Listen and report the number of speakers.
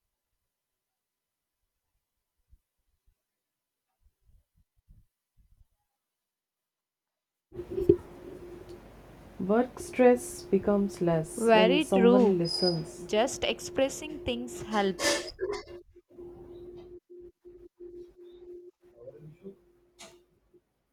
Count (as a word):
two